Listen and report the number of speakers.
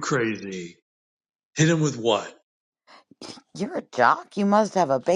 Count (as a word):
two